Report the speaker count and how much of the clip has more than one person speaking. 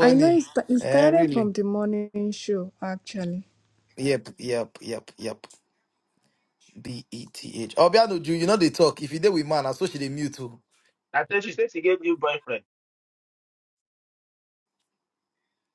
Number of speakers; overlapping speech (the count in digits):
3, about 6%